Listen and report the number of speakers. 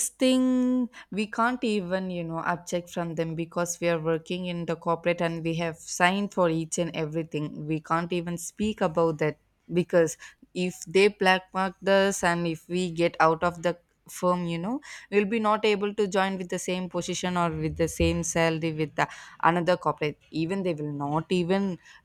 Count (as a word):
one